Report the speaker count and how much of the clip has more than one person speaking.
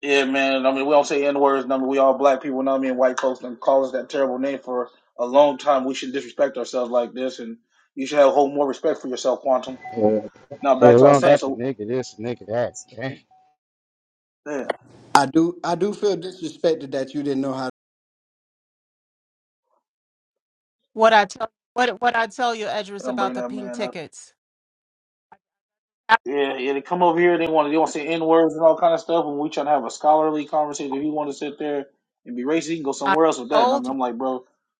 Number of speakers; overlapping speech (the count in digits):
4, about 7%